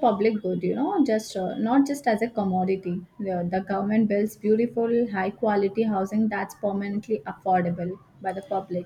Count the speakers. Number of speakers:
one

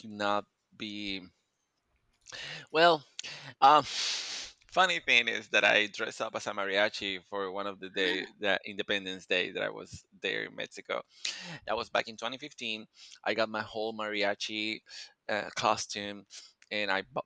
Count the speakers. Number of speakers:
one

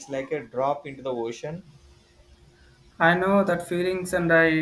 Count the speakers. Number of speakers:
two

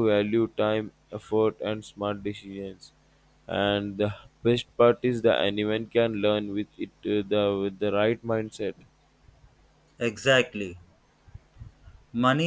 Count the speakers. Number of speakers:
two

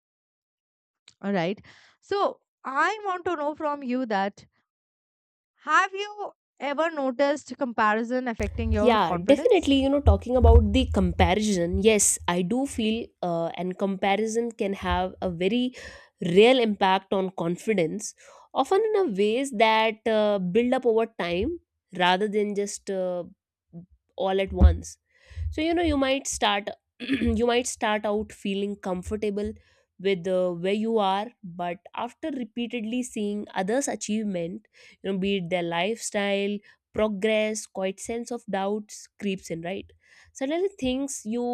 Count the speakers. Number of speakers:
two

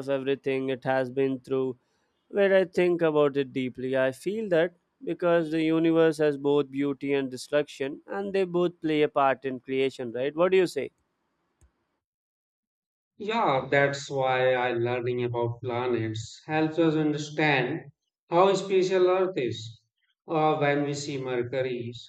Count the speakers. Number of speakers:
two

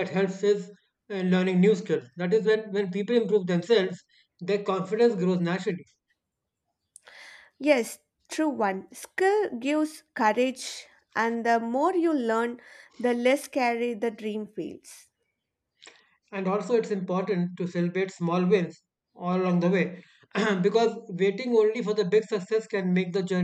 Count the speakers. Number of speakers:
two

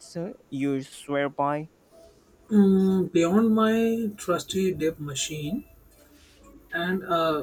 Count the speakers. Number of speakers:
two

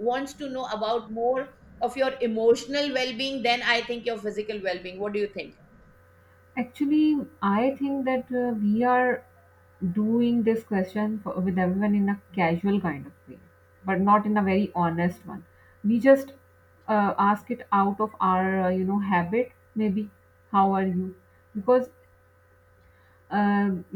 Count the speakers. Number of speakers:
two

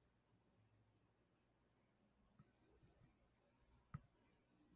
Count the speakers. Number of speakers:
zero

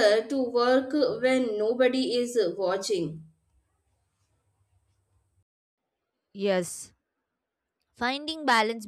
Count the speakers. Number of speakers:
two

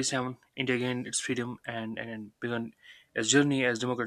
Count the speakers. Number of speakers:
one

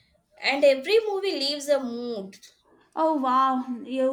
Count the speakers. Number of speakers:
two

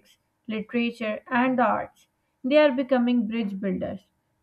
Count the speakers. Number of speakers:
one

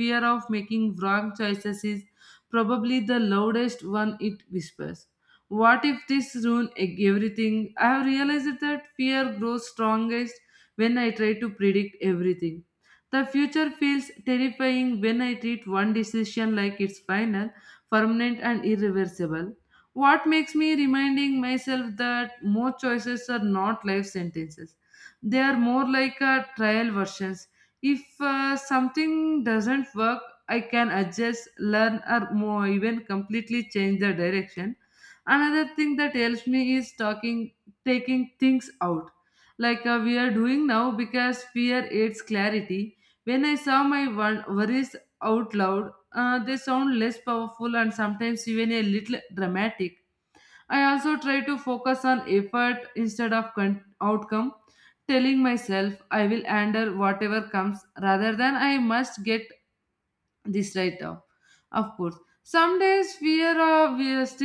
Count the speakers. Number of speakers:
one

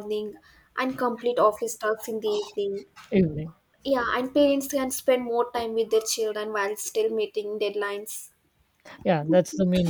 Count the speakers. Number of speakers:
two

